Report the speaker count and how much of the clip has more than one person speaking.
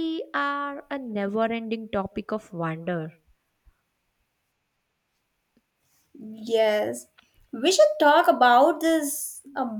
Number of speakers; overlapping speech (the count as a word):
two, no overlap